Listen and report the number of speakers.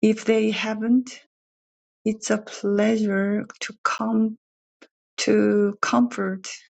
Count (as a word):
one